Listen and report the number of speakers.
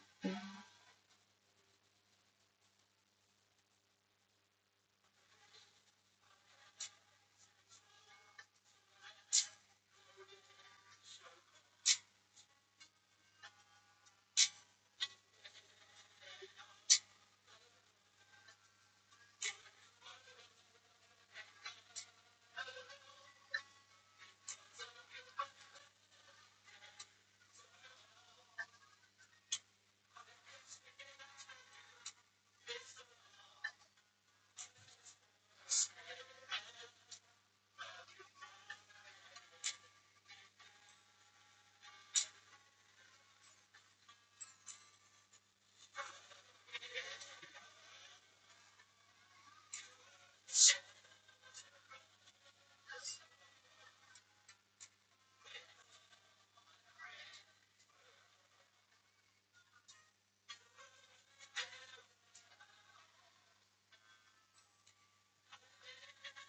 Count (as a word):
zero